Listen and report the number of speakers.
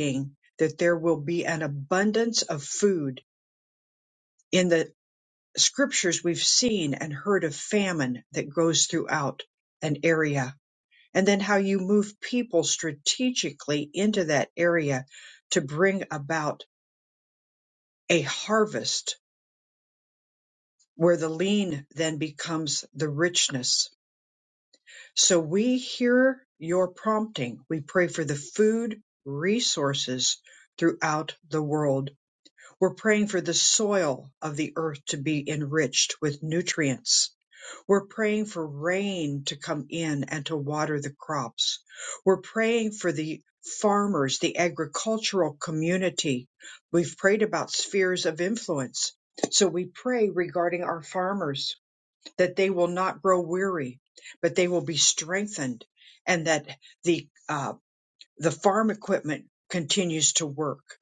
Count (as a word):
one